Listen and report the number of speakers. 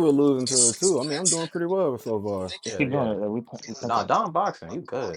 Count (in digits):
3